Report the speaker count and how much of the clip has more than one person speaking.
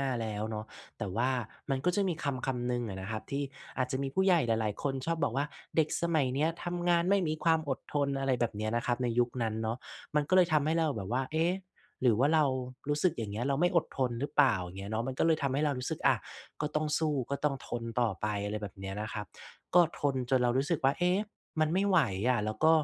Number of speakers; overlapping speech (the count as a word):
one, no overlap